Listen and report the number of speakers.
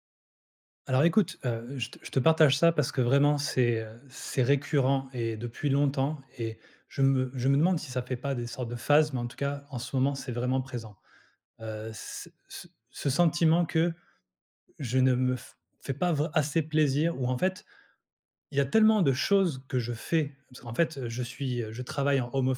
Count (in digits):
1